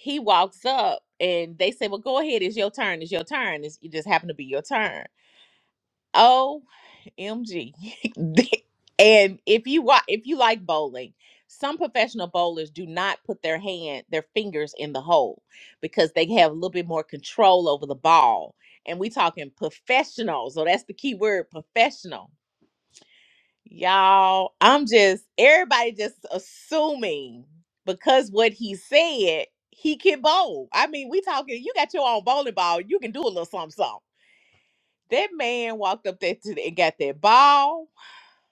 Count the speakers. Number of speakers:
1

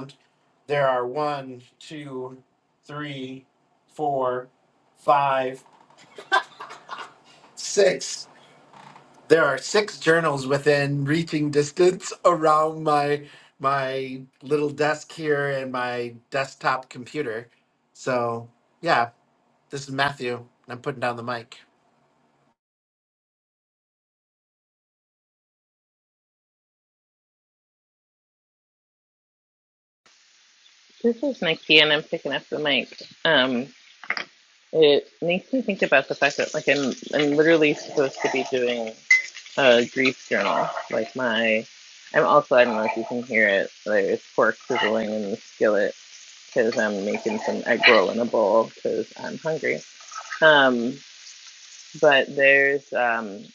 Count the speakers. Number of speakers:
2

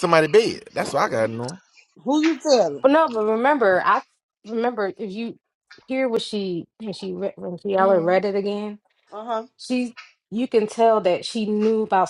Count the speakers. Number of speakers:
3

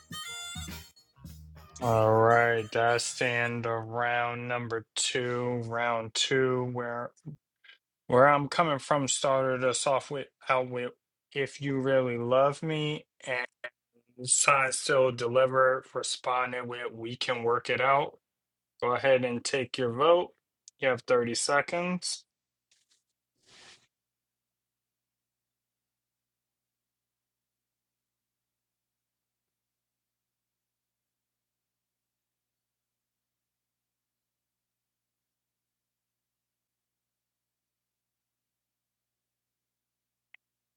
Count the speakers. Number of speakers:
1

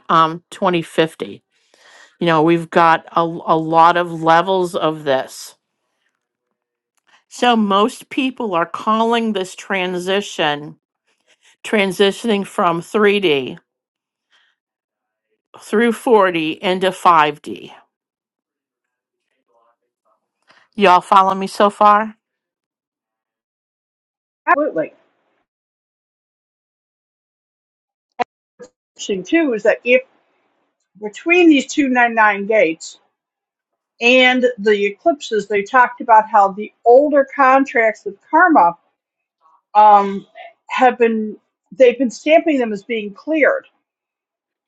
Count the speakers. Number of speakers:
2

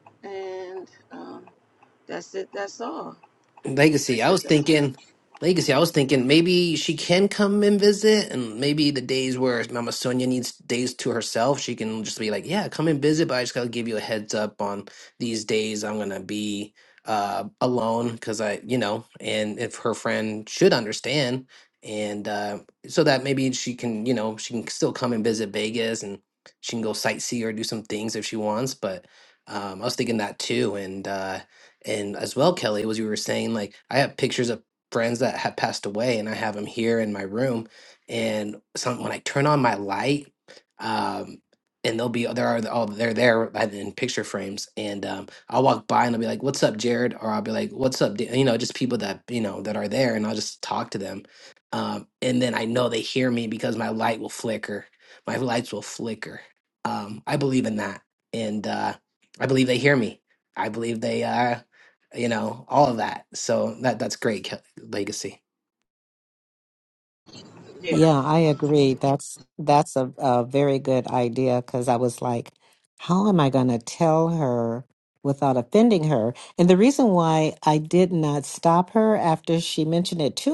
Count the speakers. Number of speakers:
3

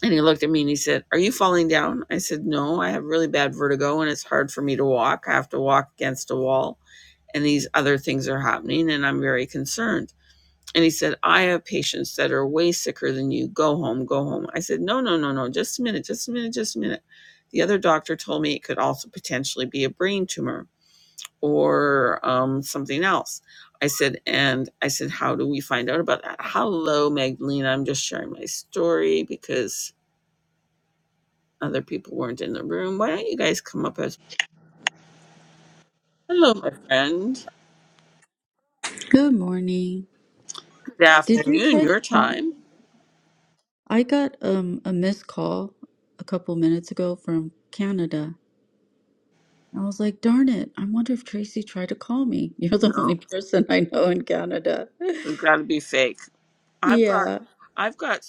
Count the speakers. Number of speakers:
2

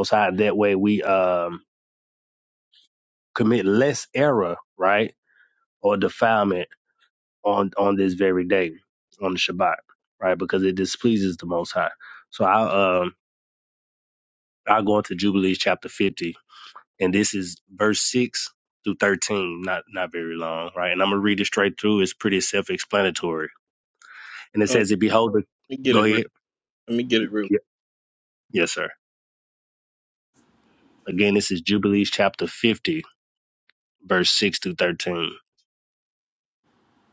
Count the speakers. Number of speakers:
2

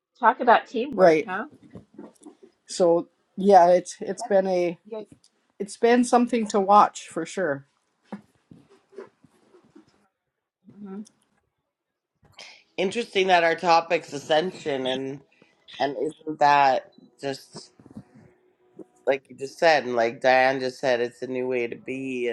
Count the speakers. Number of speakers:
3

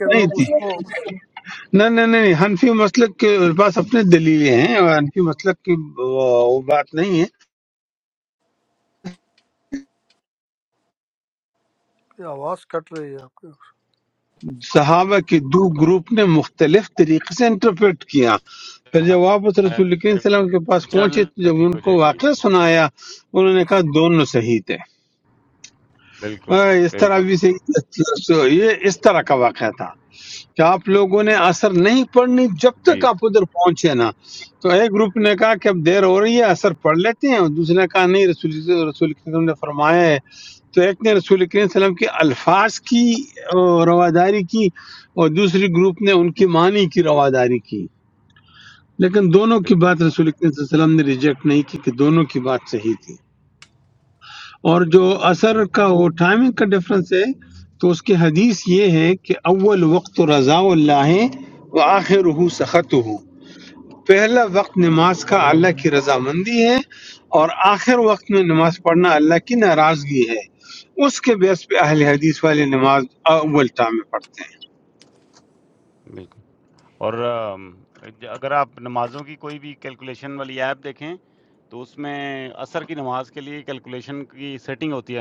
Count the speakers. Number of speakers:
3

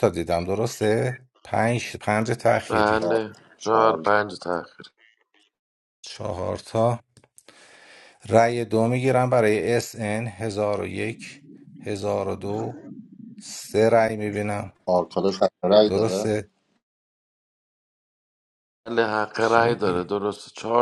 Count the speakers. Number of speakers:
3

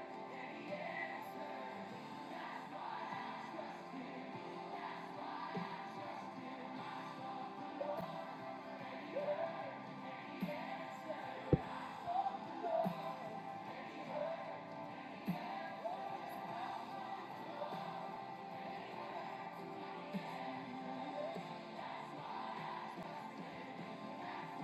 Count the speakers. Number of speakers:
0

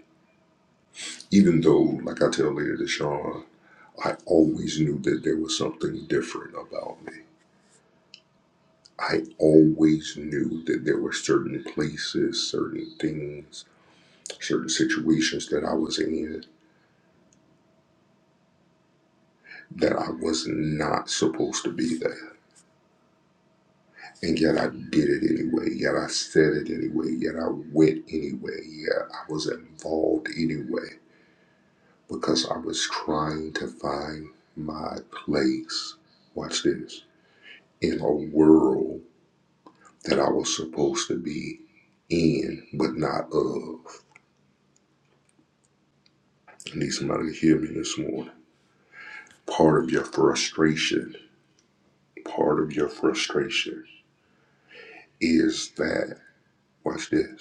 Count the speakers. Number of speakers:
1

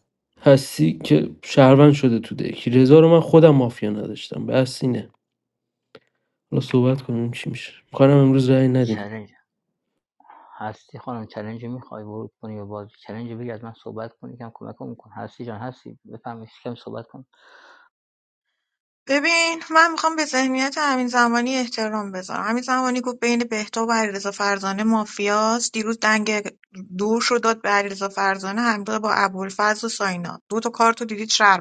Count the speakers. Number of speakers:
3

